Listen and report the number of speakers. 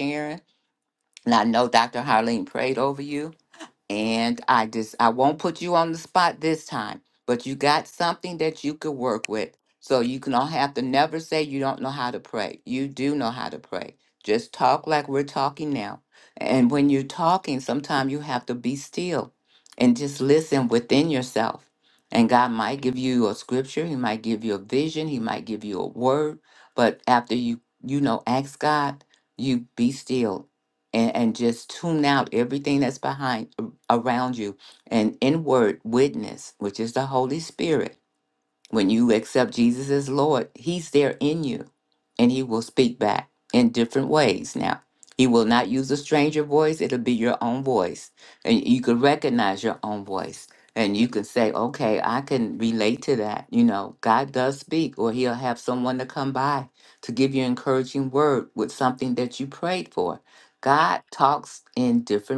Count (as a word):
one